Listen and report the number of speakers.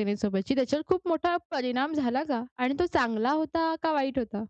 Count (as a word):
one